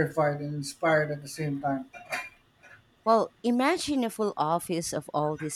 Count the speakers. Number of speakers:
2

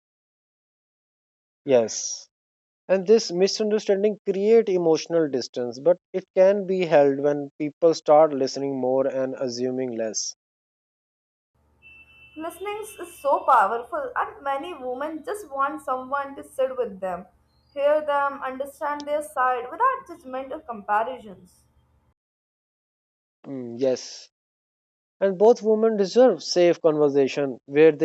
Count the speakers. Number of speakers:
2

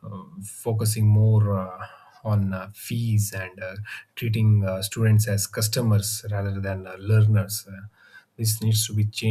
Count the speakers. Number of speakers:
1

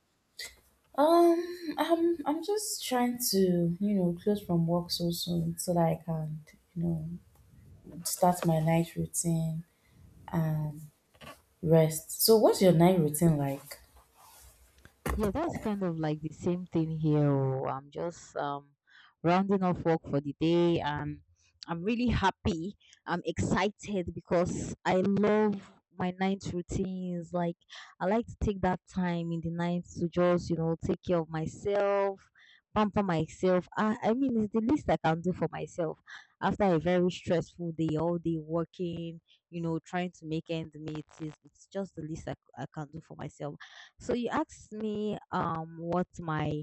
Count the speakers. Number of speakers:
2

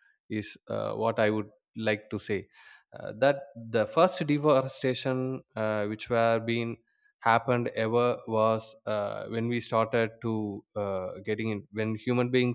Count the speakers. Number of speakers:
1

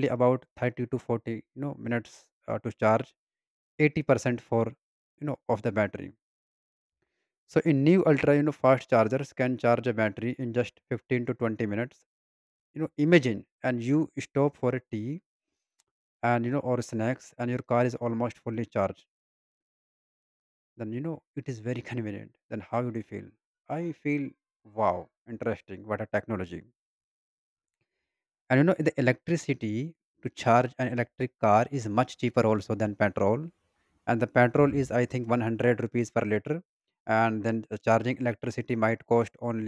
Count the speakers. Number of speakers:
1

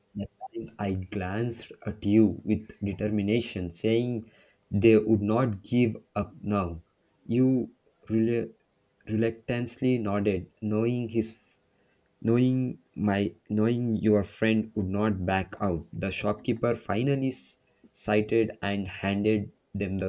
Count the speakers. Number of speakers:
1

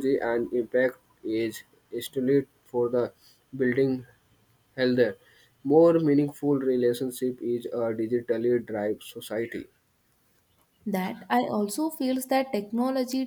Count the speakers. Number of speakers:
2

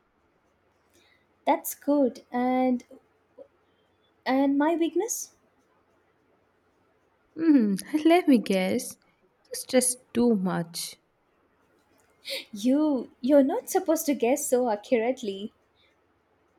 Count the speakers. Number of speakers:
2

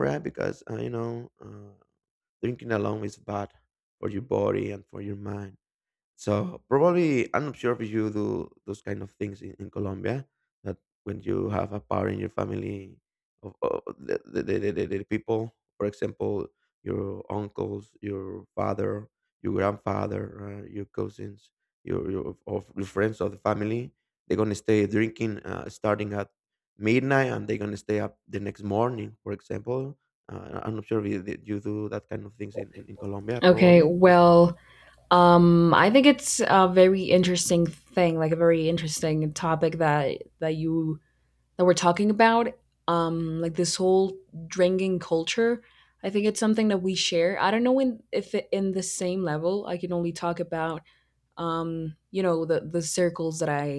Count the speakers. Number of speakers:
2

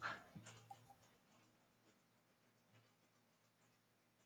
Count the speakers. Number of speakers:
0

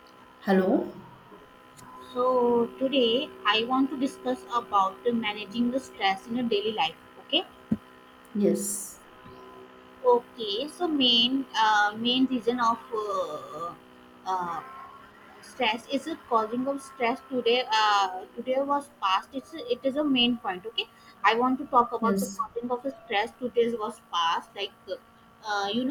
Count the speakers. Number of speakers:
2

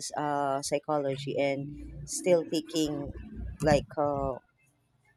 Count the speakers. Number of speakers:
1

